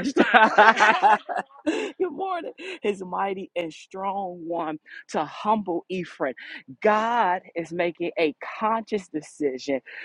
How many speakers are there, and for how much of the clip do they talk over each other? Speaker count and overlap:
1, no overlap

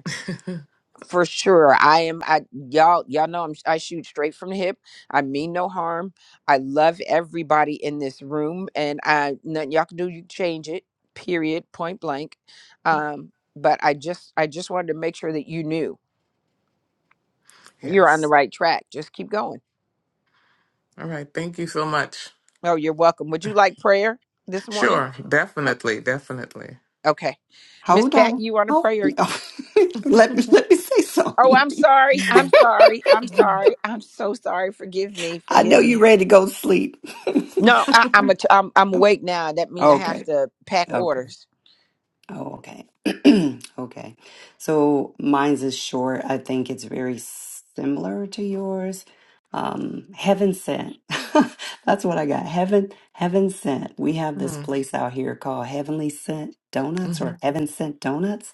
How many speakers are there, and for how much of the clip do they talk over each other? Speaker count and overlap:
3, about 7%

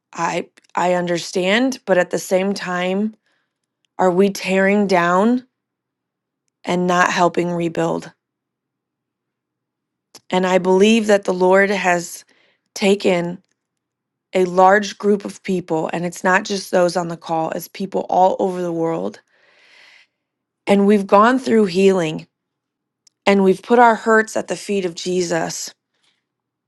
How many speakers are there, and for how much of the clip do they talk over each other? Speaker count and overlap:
1, no overlap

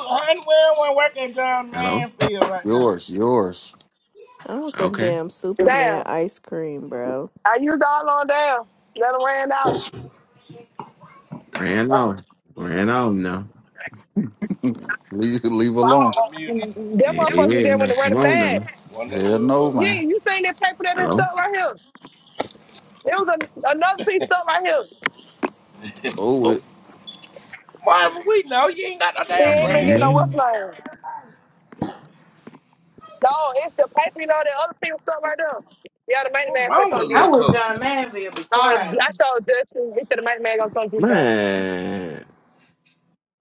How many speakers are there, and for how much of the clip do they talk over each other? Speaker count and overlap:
6, about 19%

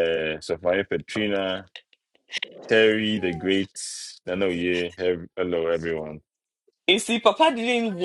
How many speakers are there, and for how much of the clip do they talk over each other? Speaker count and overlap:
2, no overlap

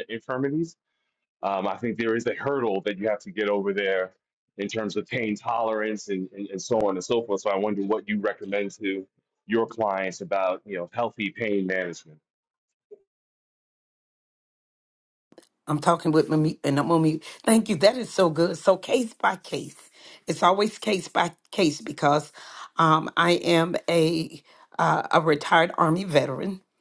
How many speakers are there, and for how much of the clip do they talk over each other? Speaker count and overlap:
2, no overlap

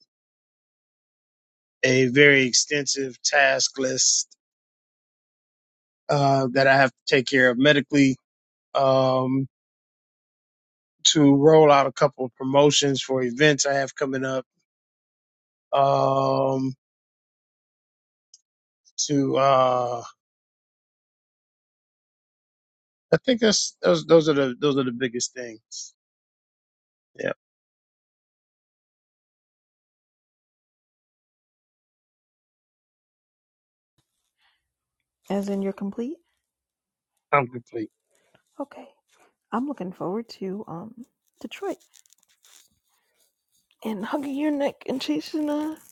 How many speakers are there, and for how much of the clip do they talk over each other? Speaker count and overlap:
2, no overlap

